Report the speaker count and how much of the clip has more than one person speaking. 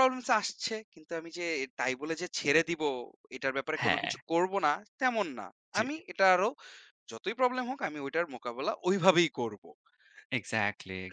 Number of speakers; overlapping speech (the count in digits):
2, about 5%